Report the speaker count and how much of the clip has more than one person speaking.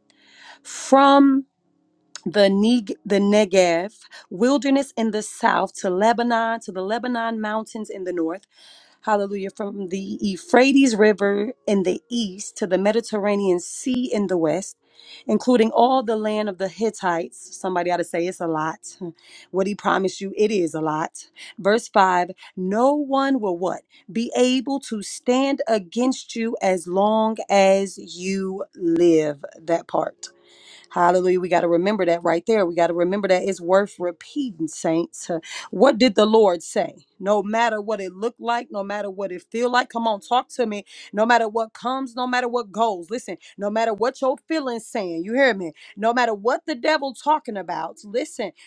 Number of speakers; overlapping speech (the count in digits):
1, no overlap